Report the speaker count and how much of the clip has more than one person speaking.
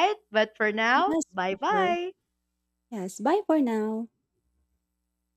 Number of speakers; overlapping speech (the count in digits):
2, about 19%